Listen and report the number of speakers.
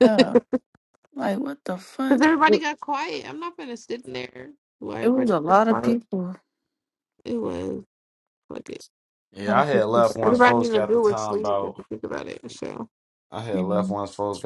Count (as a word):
three